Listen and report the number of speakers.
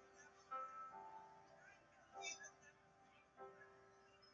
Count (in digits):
0